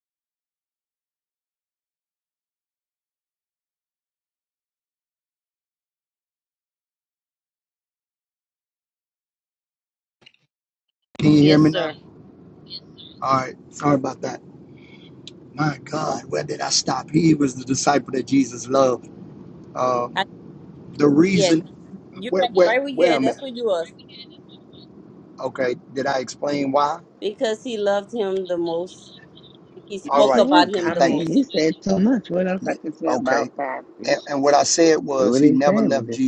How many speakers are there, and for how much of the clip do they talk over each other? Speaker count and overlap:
three, about 14%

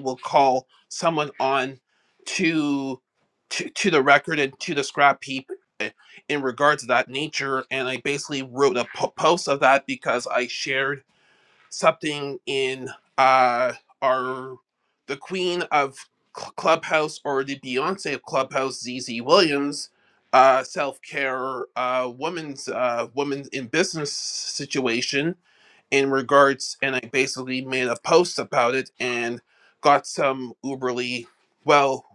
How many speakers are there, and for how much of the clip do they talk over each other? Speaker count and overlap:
one, no overlap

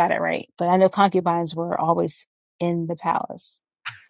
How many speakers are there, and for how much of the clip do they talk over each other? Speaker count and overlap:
one, no overlap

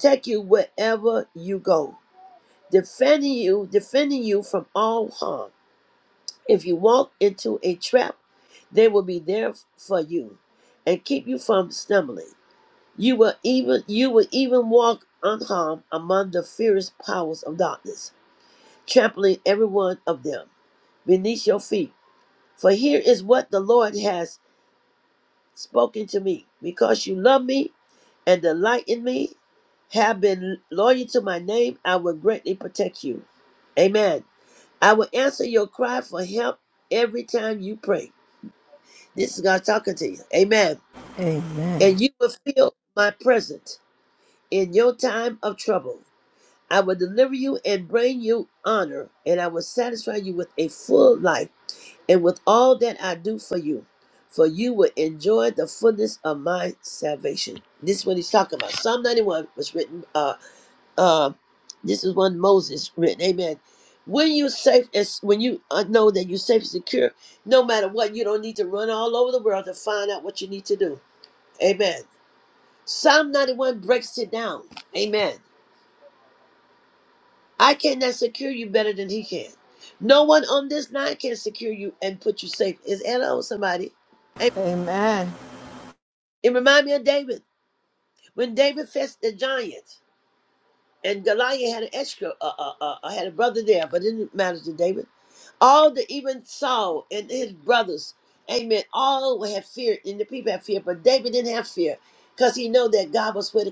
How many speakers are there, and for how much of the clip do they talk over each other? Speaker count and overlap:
two, no overlap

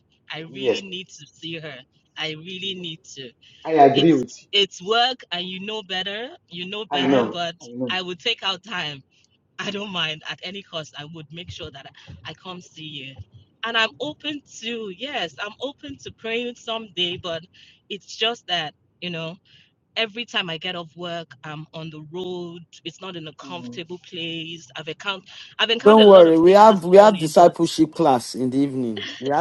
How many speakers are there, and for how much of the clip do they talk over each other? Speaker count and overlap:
three, about 9%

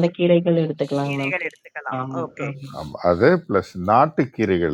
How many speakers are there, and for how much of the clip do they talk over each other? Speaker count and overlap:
three, about 18%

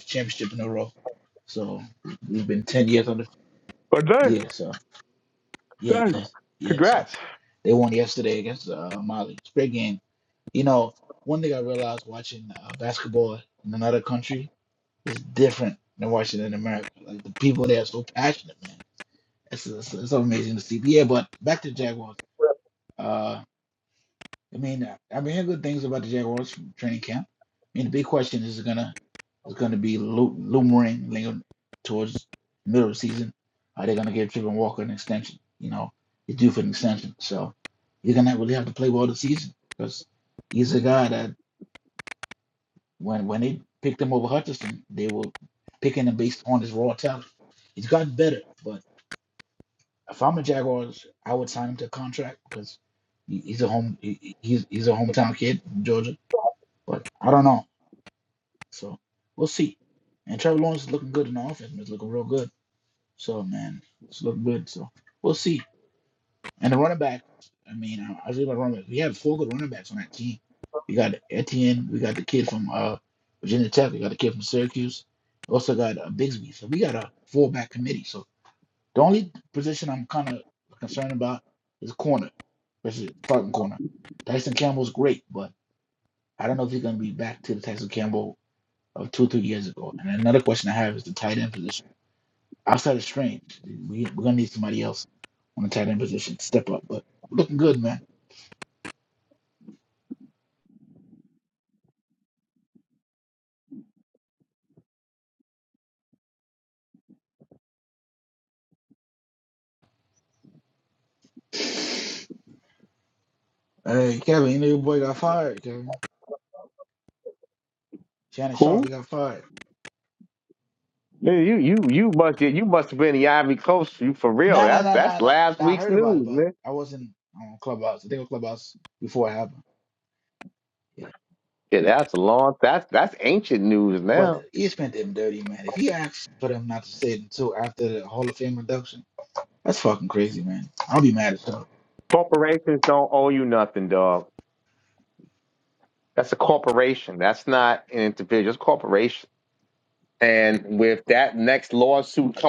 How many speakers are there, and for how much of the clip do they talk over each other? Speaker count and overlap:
two, about 2%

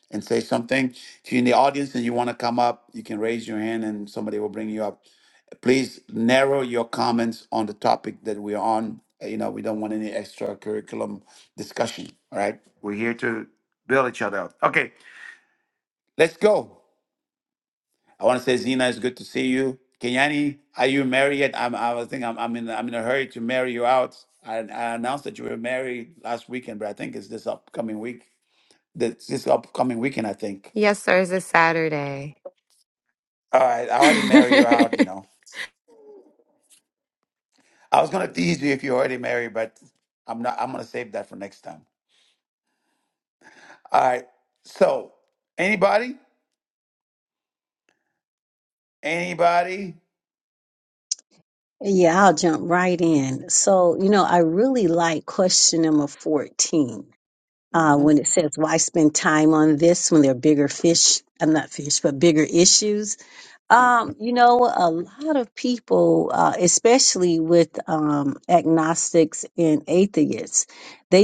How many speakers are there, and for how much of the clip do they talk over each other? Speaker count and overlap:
three, about 1%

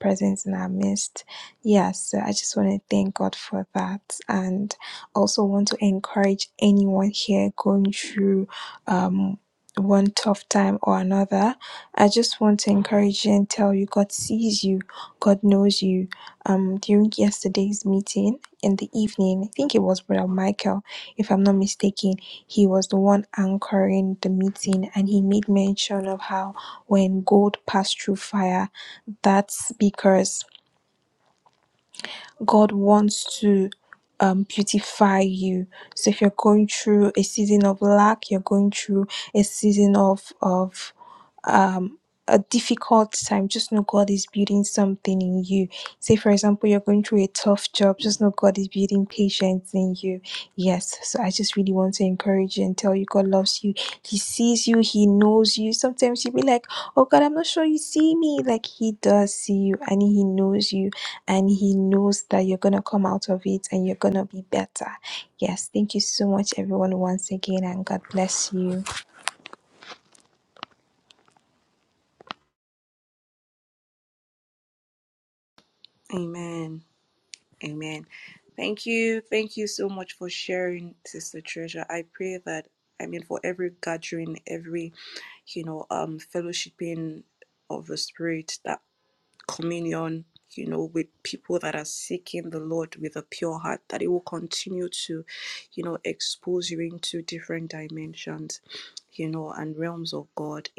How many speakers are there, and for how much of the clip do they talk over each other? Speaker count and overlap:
two, no overlap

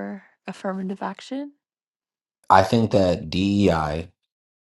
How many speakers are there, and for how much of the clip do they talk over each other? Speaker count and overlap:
two, no overlap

